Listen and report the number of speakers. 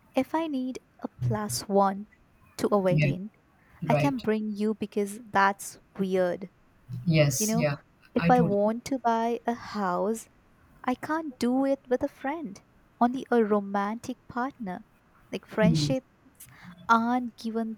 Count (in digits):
2